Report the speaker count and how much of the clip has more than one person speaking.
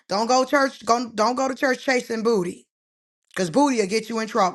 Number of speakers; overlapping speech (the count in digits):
1, no overlap